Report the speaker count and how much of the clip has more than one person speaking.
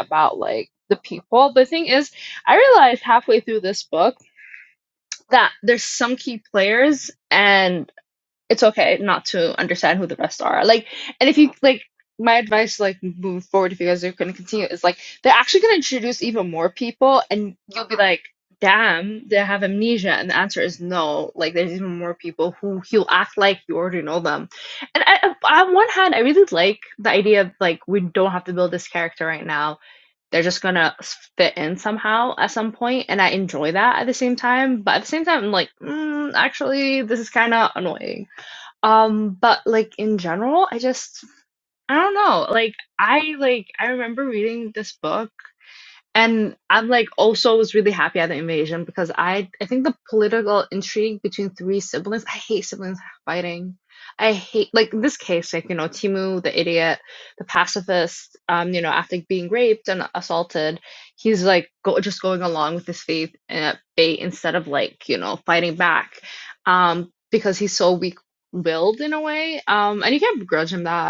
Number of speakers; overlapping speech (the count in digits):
1, no overlap